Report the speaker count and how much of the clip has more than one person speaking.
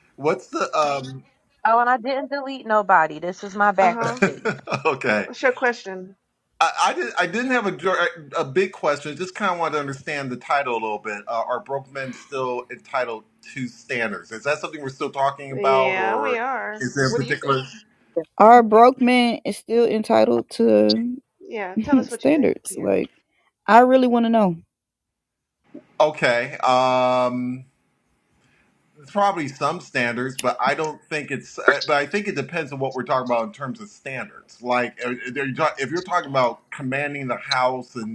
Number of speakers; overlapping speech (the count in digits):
4, about 8%